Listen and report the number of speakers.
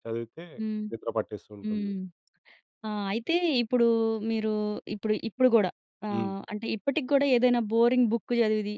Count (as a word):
two